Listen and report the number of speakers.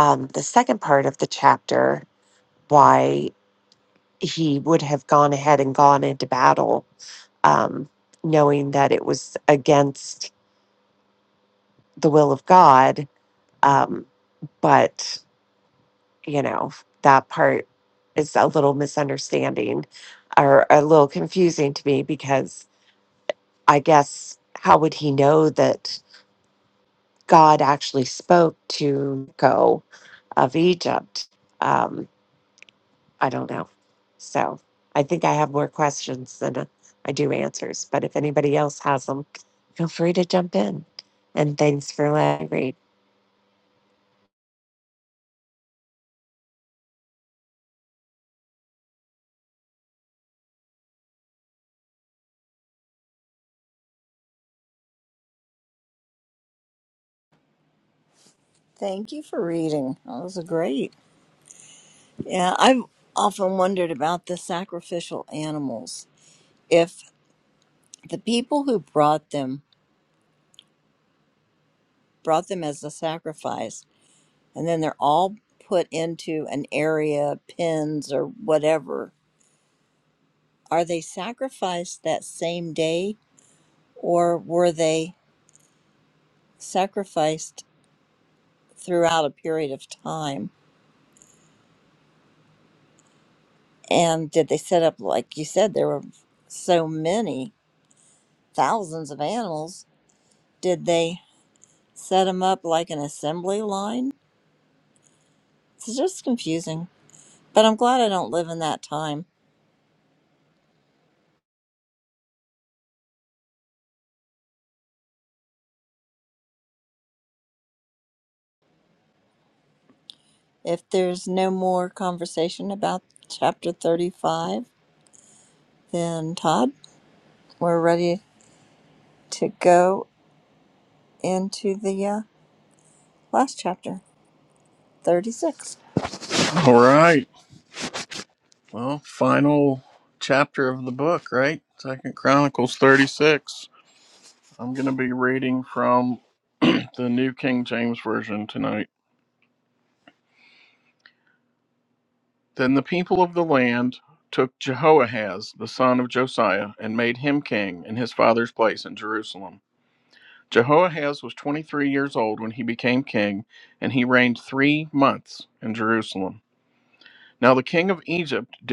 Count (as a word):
three